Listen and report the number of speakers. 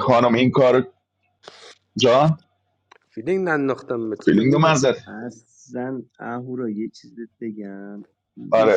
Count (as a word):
three